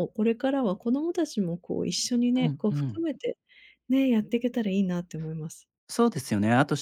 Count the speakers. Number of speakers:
2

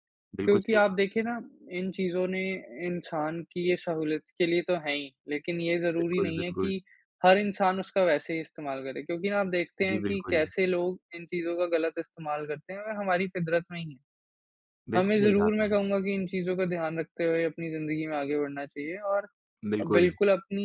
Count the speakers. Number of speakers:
2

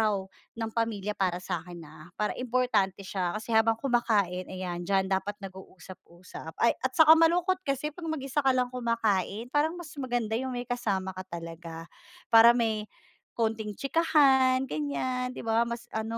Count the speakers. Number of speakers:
1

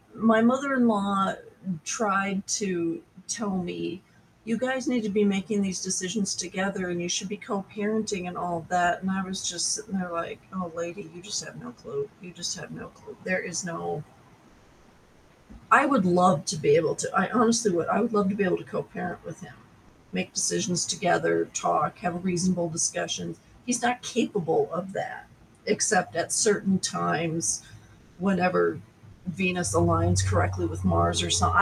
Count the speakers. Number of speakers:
1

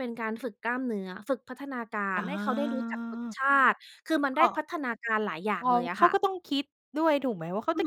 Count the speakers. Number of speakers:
2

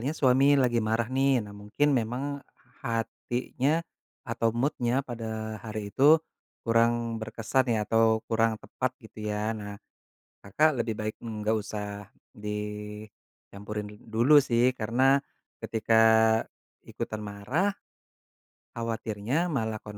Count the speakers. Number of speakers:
1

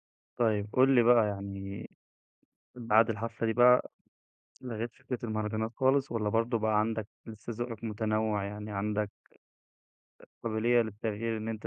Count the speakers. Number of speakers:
1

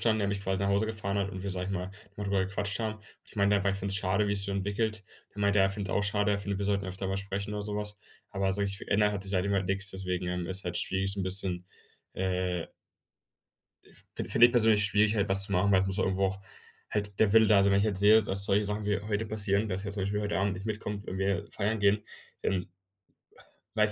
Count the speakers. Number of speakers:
1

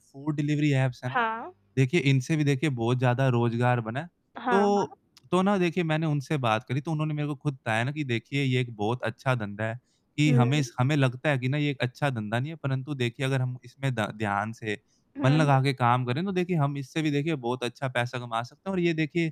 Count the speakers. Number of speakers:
2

